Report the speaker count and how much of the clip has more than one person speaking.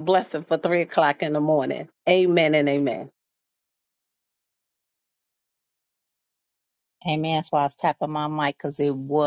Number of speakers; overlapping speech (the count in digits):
2, no overlap